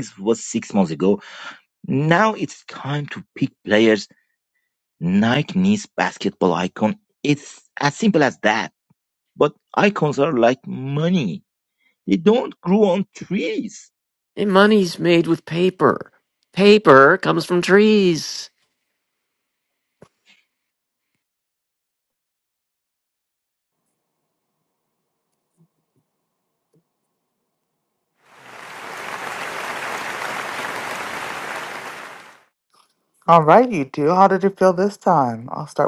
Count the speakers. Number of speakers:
3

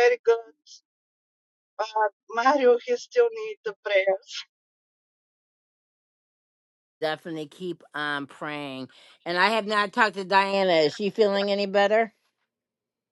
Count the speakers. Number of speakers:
2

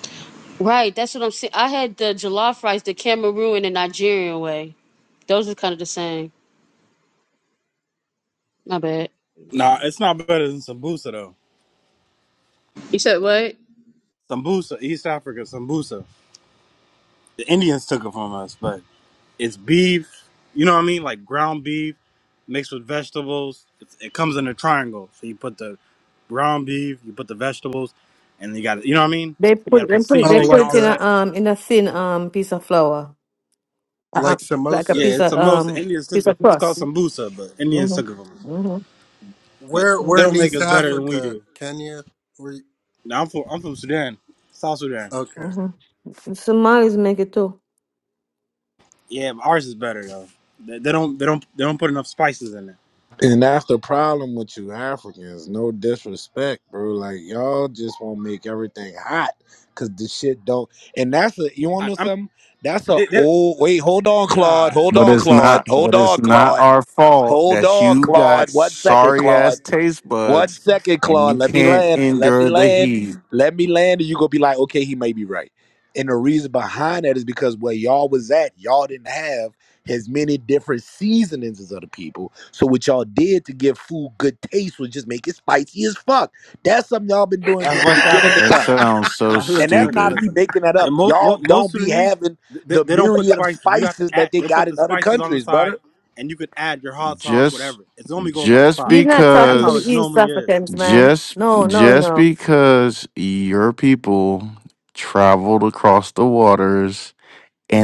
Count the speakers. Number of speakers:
6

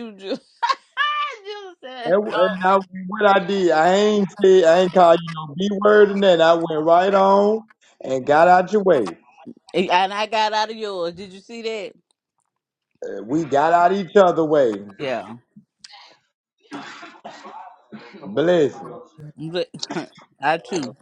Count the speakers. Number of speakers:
2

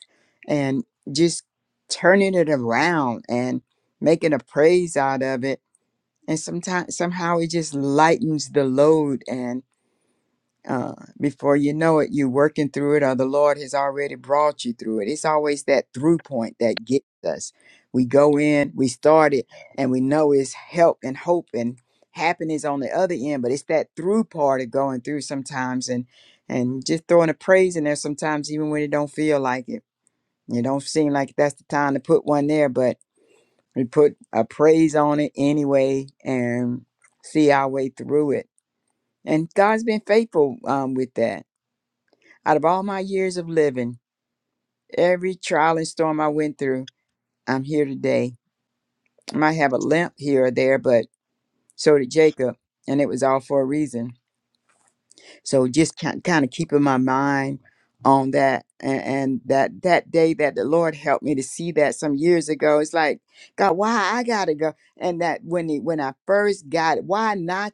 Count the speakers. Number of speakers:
1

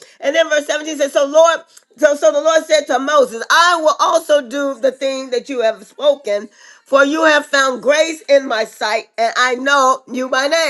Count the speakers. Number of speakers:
1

